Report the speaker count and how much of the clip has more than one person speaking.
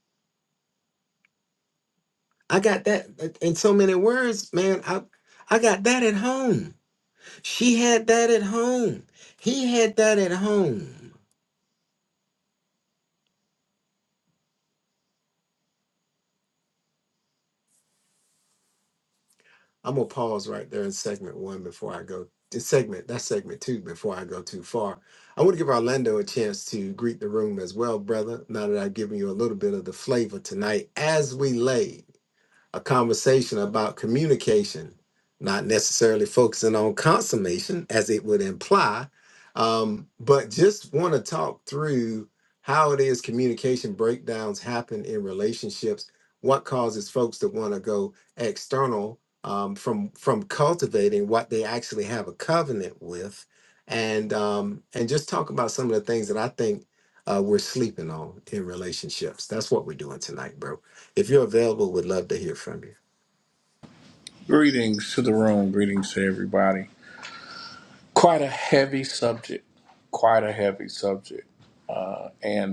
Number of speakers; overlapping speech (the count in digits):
2, no overlap